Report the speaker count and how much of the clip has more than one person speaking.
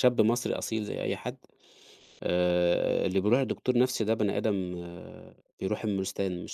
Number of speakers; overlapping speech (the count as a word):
one, no overlap